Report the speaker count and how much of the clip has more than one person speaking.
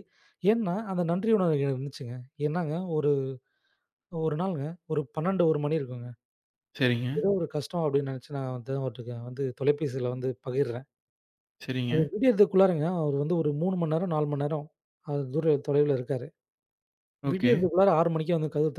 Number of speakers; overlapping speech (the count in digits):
2, about 3%